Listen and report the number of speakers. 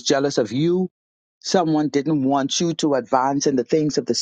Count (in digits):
1